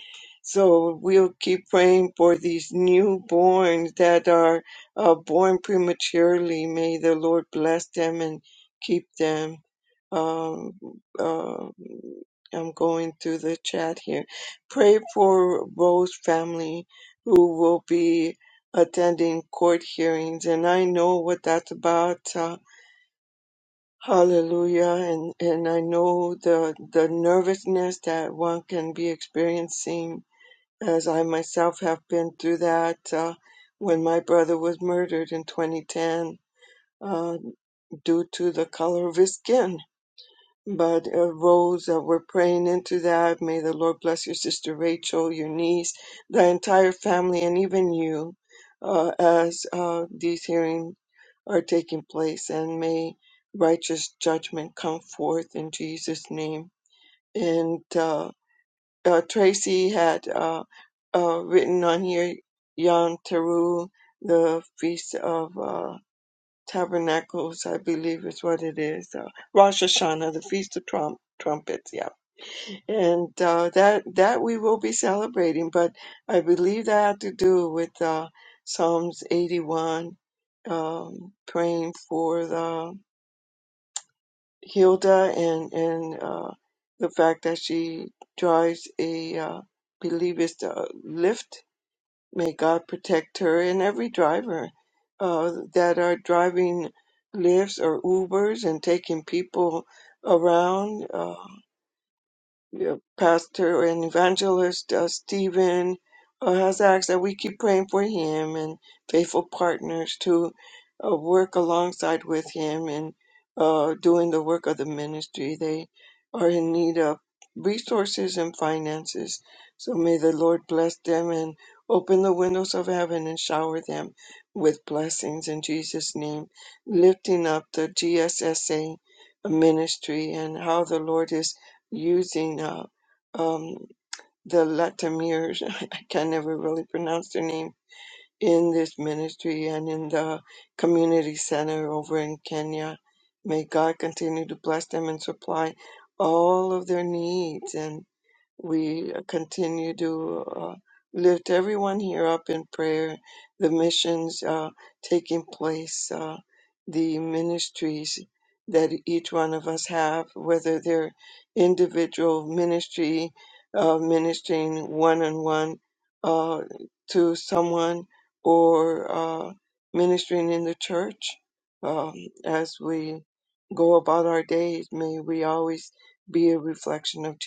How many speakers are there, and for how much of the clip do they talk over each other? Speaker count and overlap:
one, no overlap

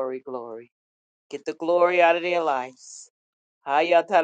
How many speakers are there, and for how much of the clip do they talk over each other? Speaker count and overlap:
one, no overlap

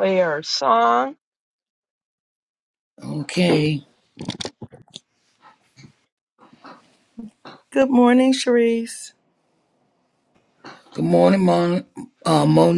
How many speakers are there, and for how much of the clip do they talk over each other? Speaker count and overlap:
three, no overlap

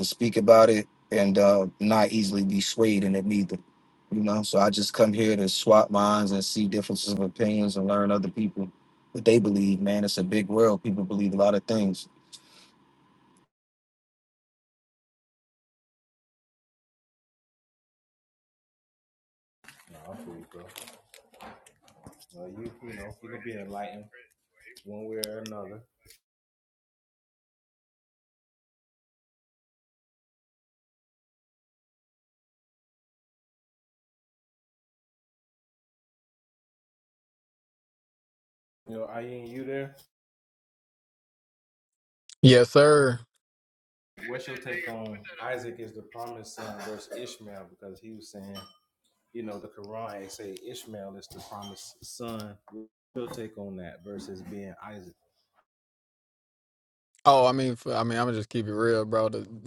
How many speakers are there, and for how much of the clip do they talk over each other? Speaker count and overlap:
three, no overlap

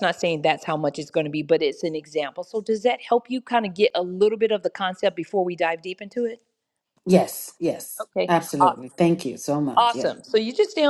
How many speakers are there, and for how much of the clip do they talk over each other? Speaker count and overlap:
two, about 7%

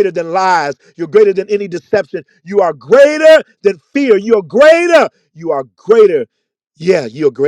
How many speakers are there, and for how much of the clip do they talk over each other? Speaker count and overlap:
one, no overlap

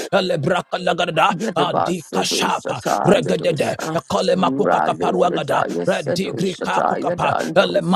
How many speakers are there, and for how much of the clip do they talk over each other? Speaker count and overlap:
two, about 59%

